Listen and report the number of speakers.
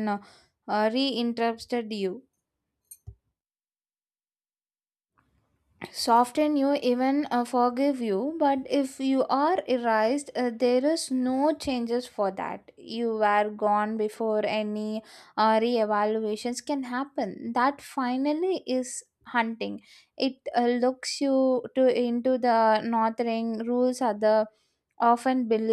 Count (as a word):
one